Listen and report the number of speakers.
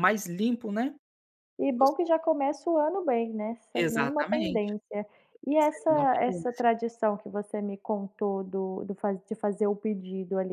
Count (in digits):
2